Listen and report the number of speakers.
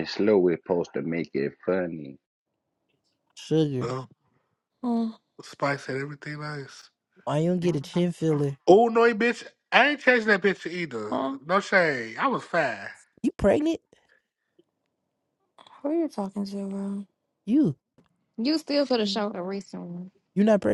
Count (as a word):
five